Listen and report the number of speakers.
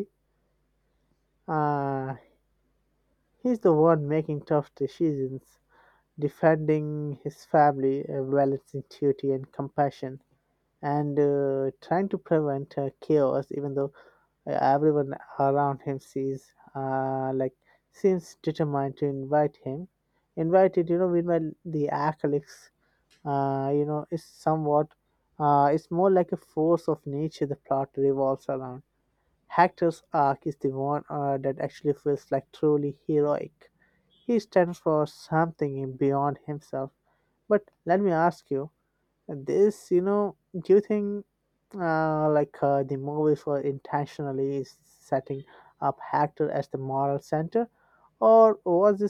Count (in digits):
1